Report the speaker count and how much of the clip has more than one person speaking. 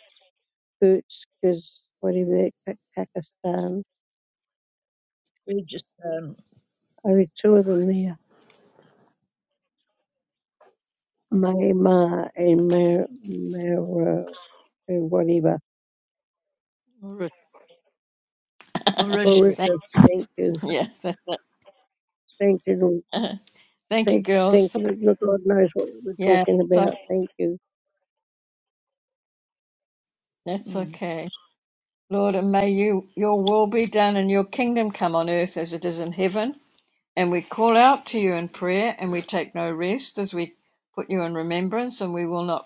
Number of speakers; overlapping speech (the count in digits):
3, about 5%